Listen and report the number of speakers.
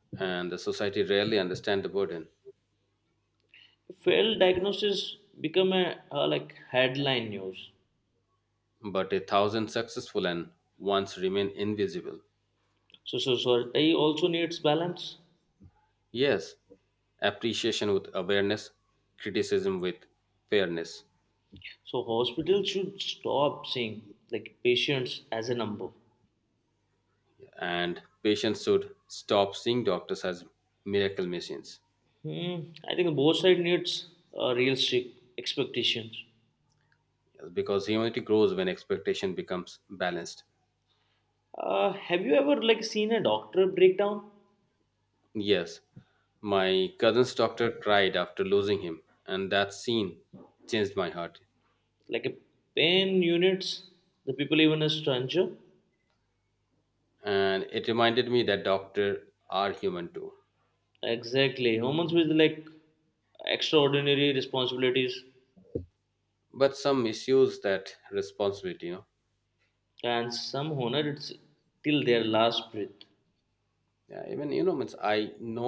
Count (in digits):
2